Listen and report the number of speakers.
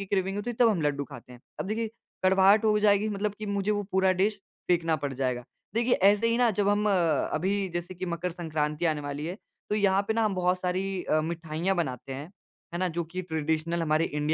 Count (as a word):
one